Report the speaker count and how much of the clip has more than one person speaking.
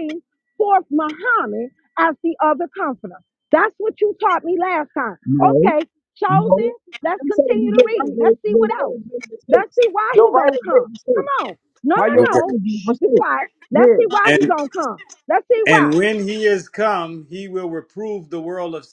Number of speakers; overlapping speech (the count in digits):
3, about 32%